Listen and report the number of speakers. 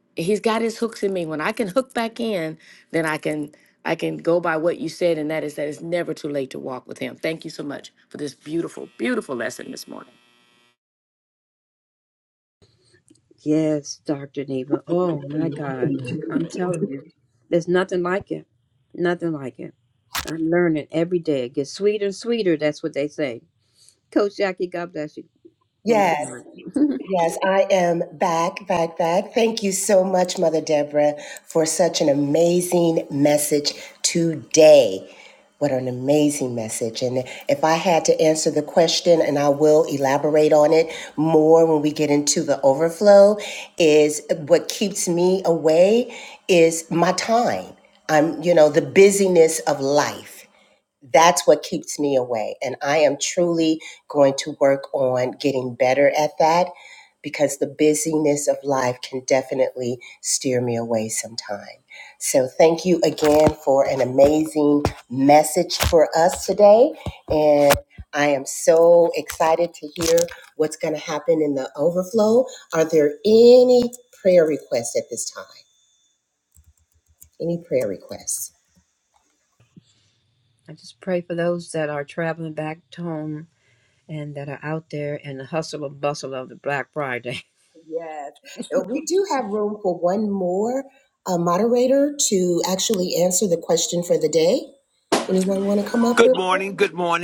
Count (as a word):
four